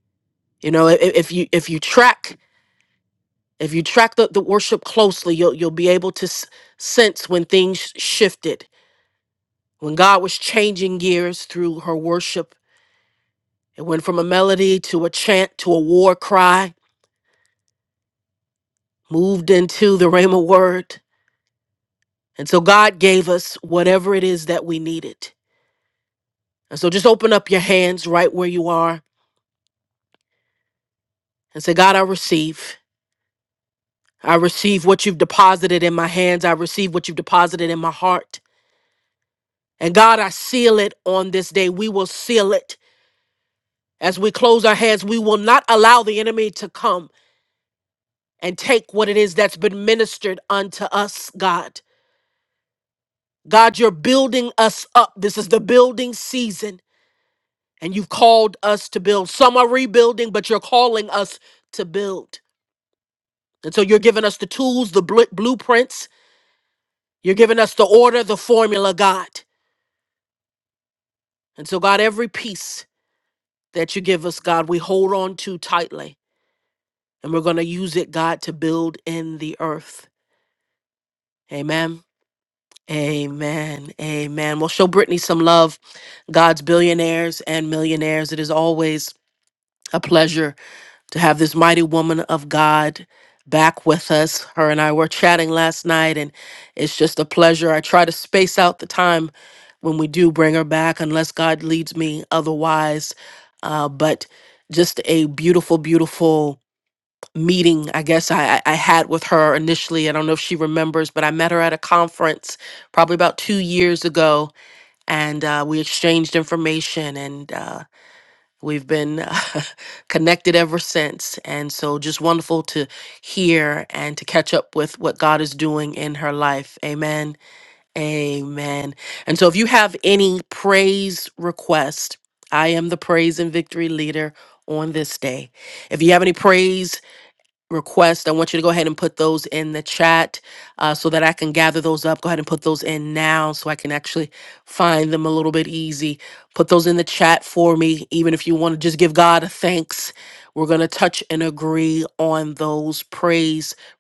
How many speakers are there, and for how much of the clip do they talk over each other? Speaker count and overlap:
one, no overlap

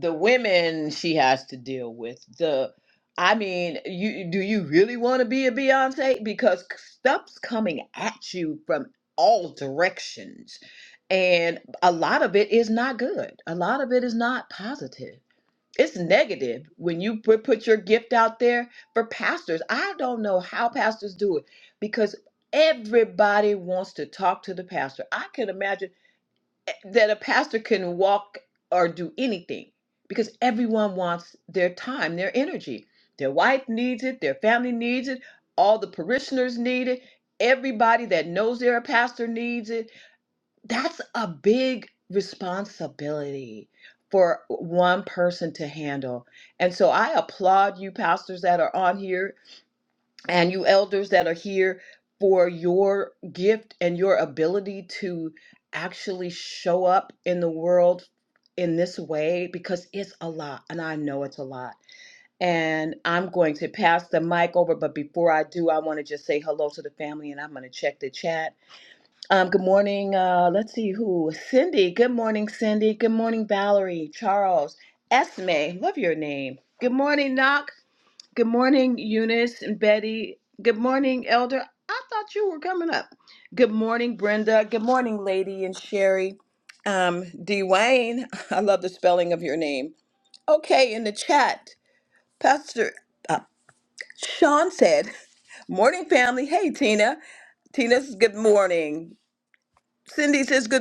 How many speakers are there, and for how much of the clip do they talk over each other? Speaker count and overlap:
one, no overlap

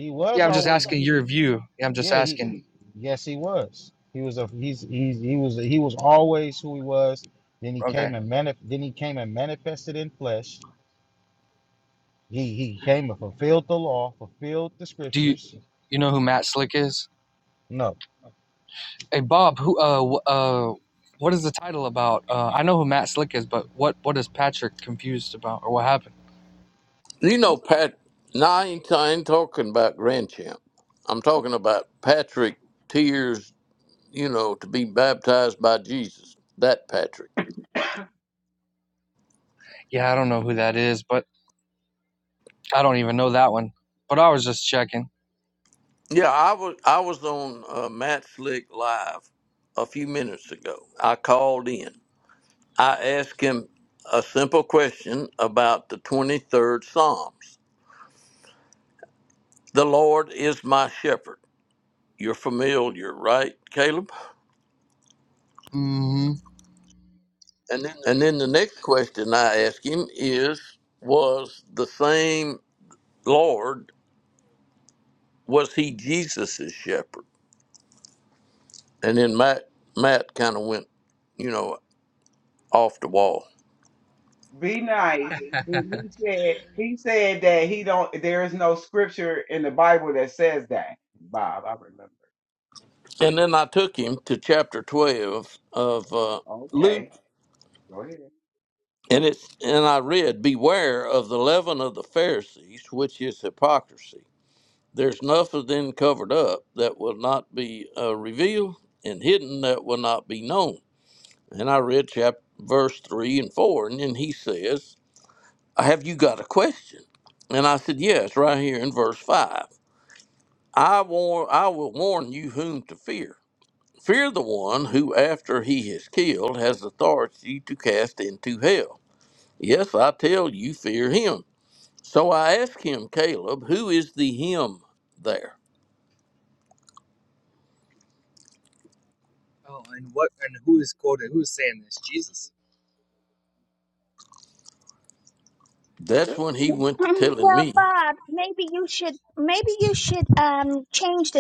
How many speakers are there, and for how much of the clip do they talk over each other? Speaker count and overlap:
five, about 2%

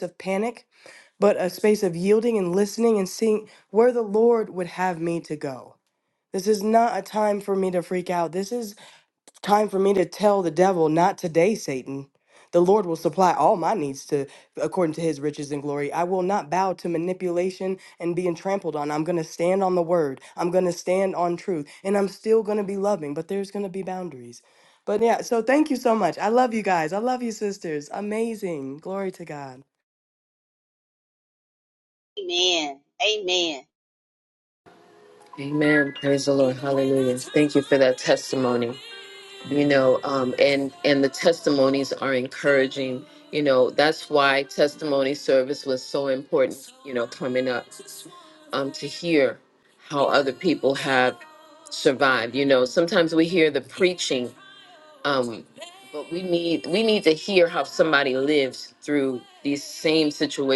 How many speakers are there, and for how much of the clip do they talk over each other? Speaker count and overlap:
three, no overlap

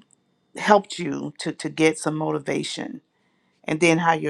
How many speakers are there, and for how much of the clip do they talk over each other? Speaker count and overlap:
one, no overlap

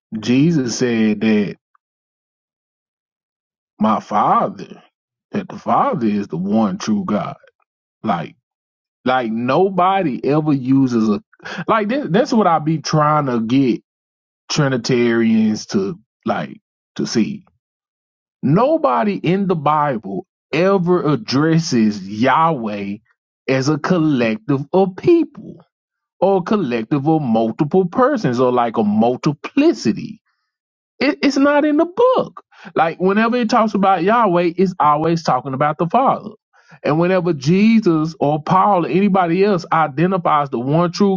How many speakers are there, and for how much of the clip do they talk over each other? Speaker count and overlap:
one, no overlap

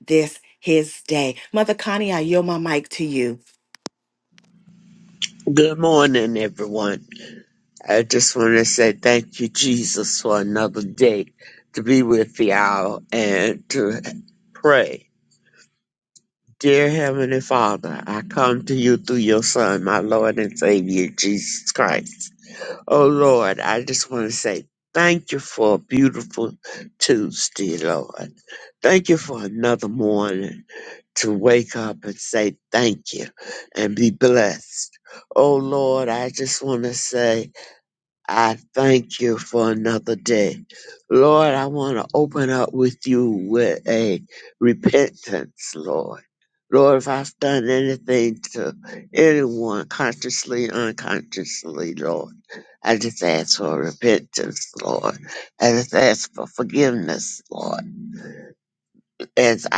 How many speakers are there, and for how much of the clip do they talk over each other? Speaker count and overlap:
two, no overlap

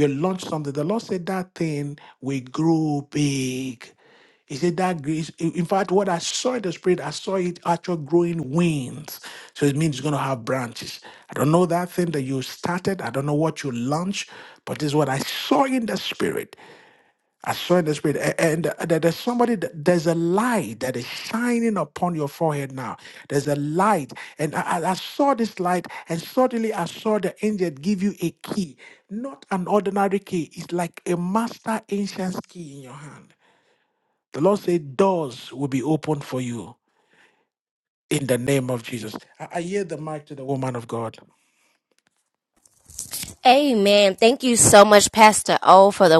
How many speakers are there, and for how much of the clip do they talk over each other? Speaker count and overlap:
two, no overlap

